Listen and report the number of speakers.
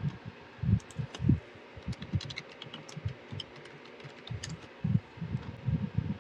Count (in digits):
0